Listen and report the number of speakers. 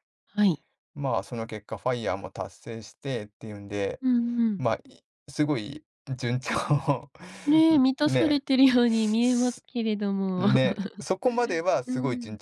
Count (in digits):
2